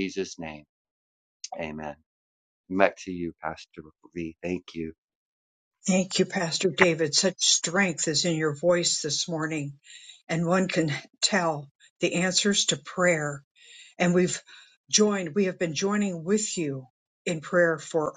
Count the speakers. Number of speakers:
2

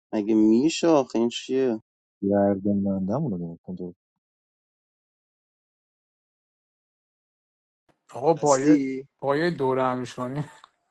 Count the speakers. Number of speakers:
3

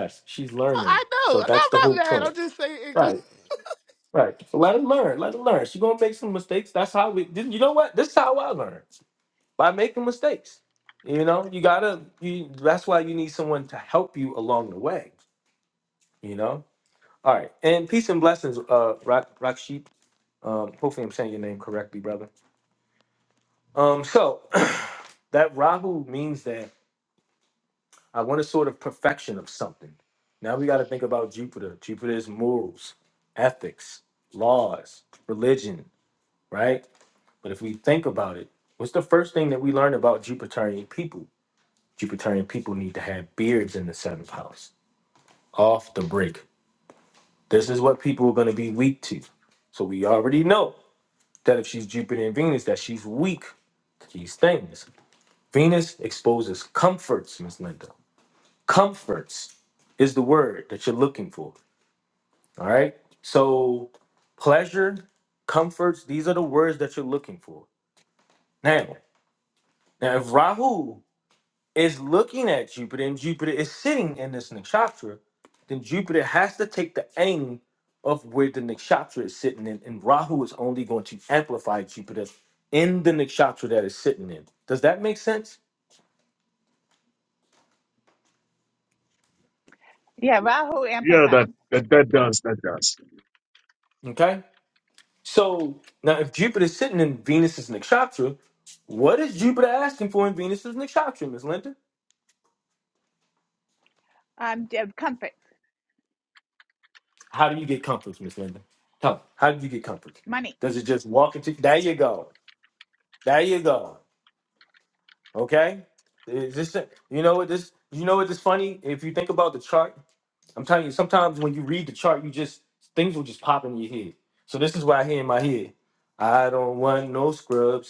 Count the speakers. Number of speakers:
4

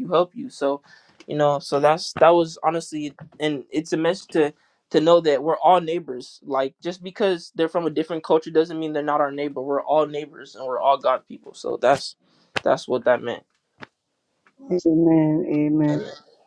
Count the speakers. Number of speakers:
2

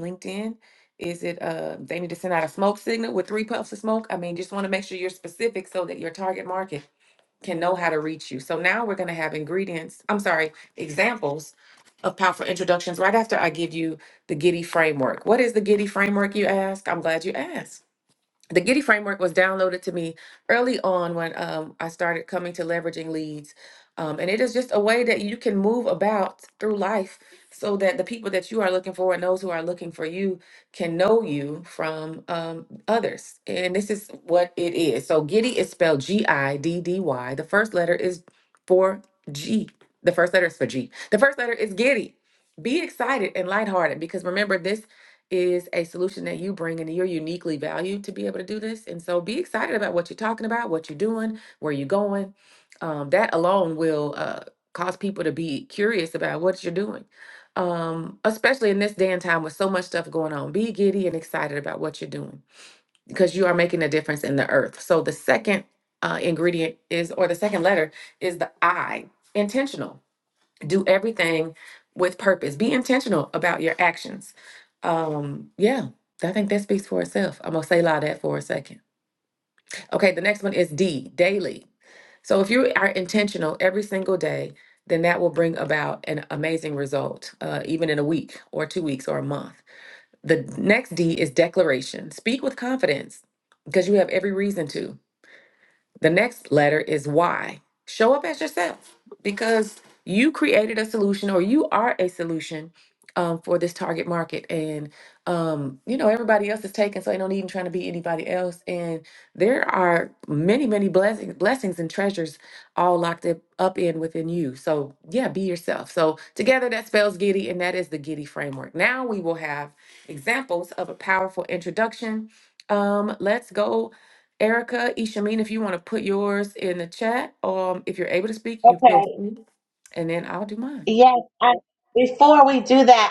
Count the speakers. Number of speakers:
2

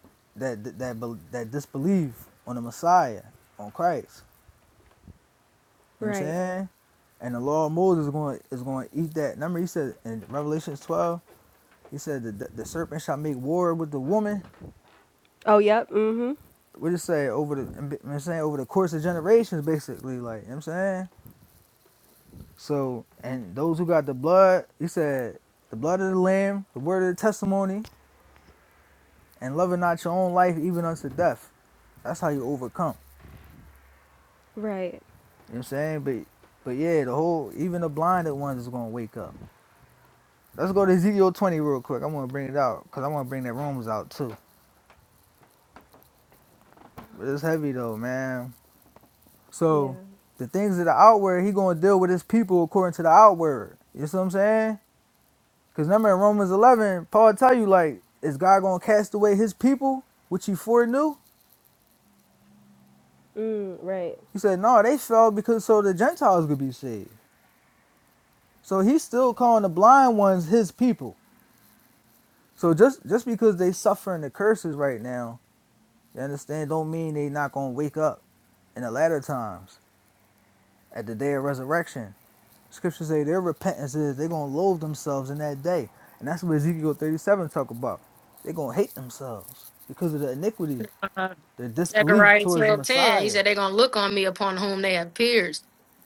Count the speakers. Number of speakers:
3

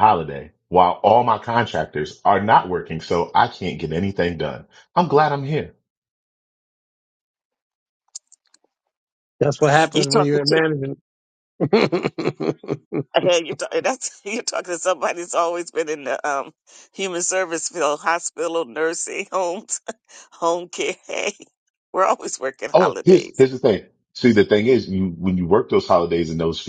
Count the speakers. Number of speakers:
3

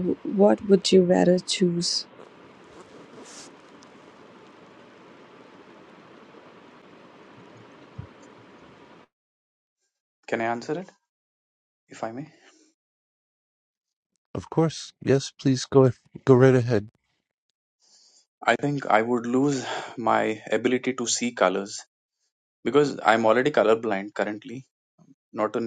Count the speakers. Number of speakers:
3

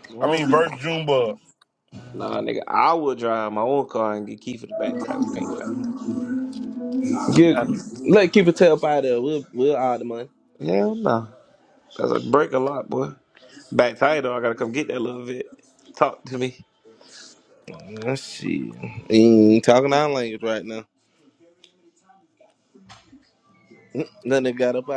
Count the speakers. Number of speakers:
3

